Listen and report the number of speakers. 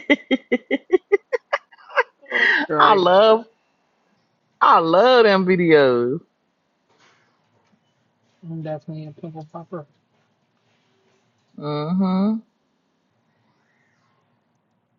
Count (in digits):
2